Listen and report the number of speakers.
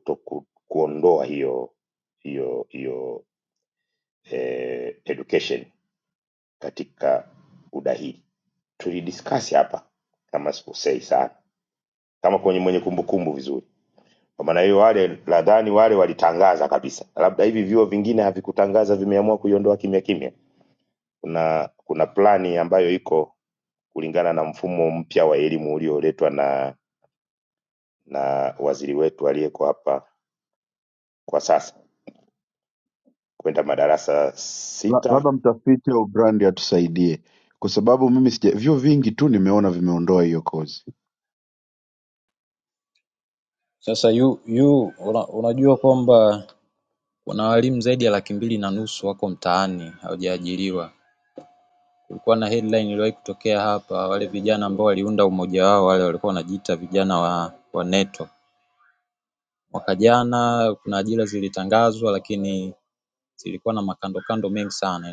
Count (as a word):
three